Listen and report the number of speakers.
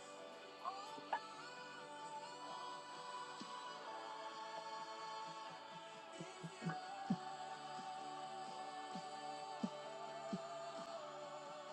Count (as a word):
zero